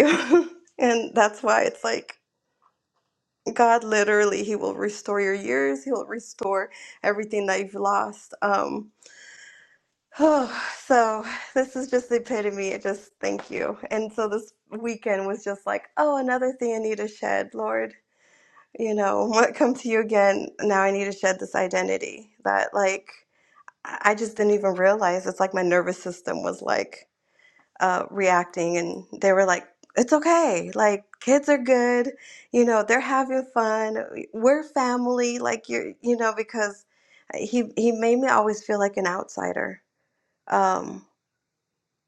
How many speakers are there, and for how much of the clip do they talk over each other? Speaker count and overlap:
one, no overlap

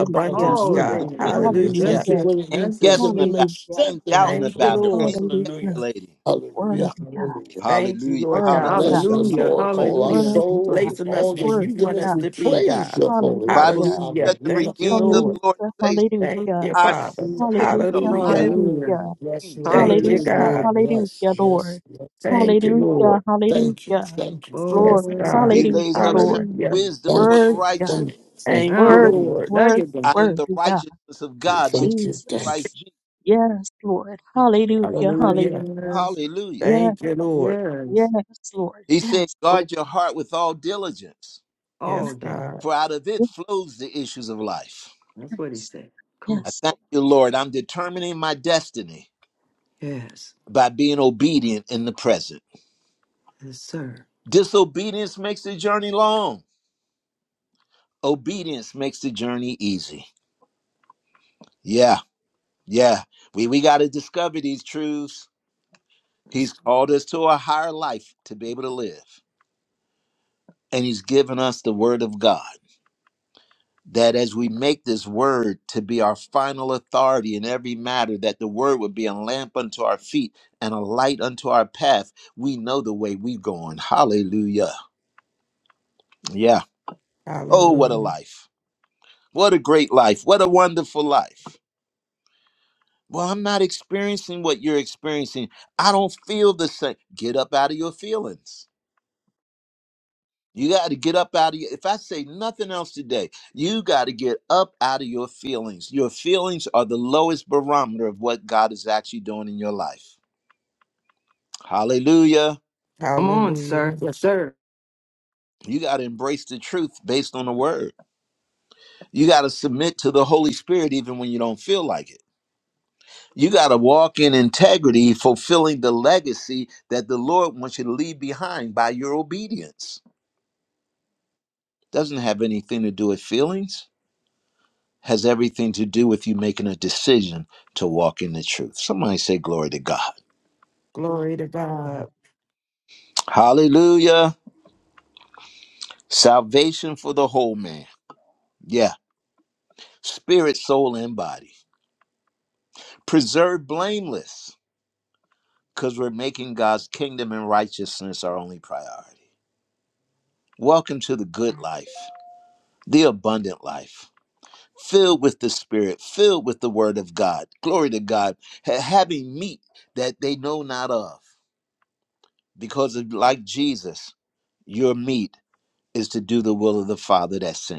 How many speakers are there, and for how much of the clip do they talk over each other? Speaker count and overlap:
five, about 18%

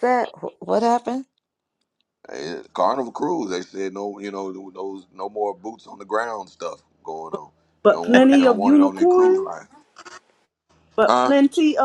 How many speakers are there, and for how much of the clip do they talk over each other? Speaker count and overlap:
three, about 16%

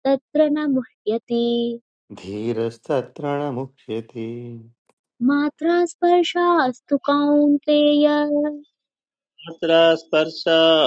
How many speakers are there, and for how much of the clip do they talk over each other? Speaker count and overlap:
three, no overlap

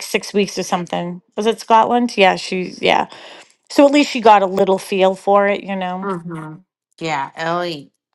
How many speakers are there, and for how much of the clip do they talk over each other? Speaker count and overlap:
two, under 1%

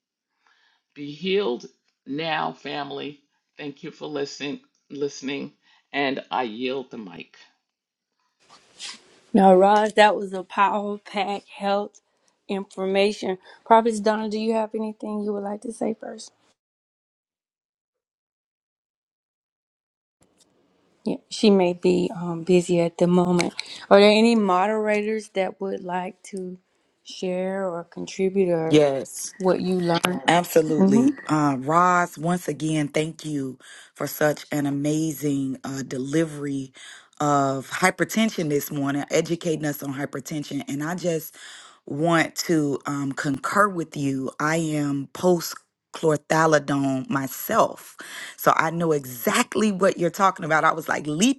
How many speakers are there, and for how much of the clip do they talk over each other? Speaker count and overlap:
three, about 1%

